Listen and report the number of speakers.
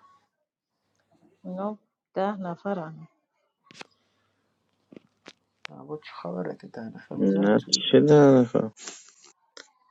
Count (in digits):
3